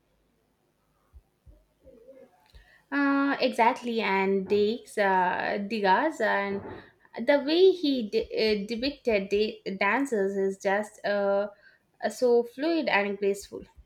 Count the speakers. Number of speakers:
one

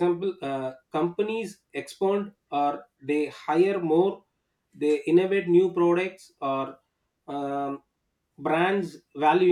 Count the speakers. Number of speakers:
one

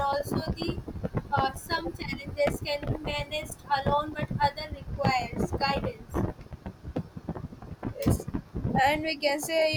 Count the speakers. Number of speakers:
two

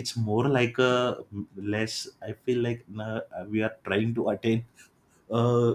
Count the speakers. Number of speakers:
one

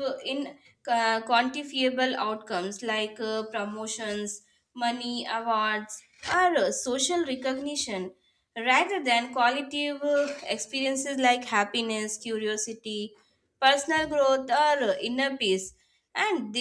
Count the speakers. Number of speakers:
one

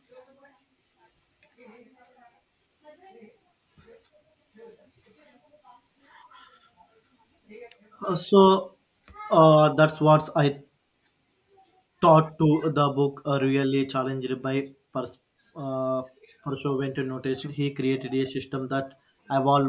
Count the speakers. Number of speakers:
one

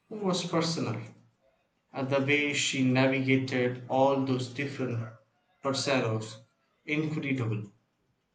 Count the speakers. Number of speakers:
one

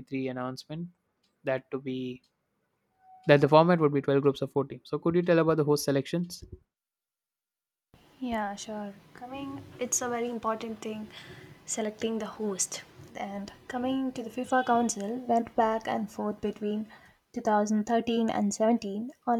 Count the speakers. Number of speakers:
two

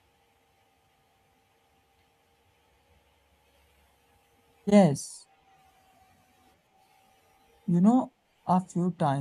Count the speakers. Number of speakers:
one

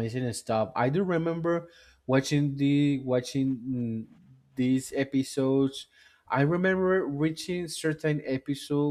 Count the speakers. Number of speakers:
one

